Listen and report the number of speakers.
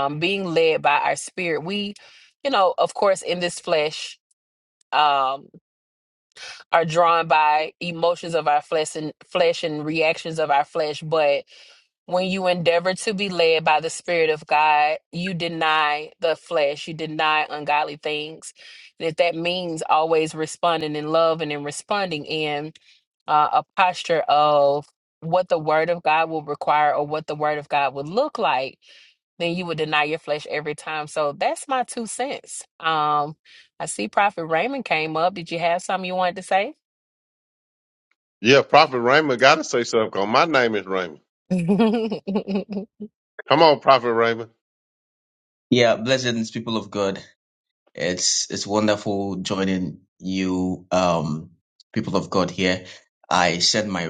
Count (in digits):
3